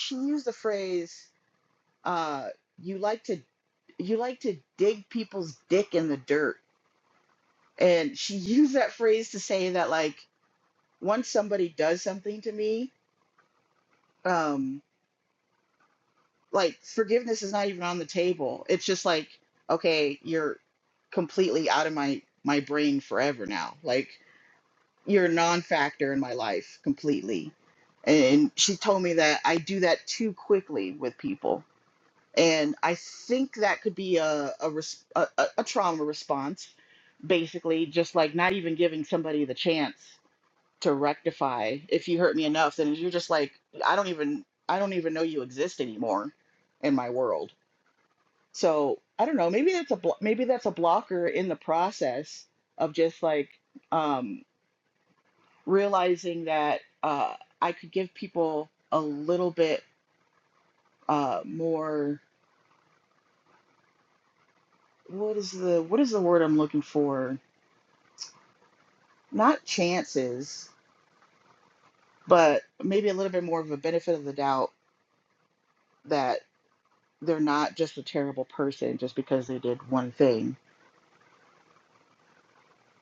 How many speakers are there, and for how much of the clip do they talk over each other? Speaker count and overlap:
one, no overlap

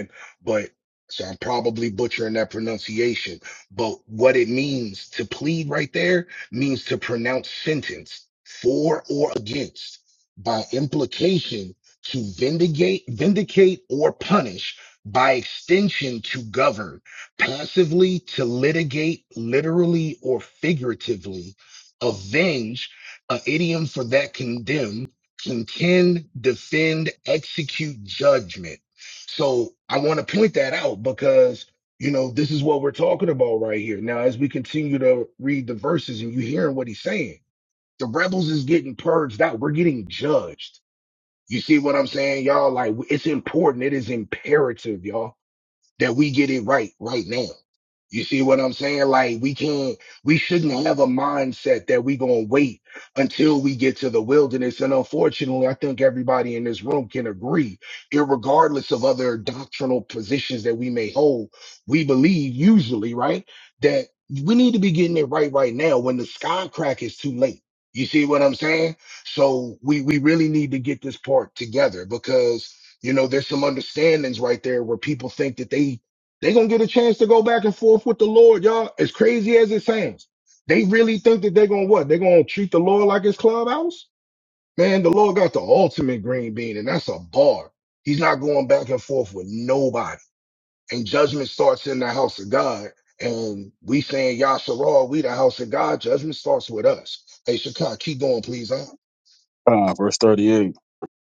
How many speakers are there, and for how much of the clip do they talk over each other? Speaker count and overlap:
two, no overlap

